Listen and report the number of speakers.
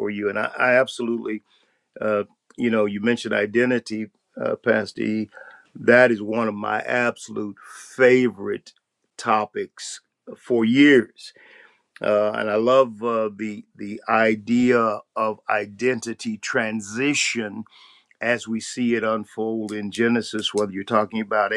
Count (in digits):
1